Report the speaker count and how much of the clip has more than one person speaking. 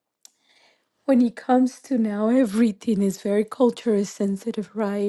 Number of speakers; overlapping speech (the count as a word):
one, no overlap